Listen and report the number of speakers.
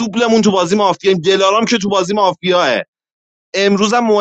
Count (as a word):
one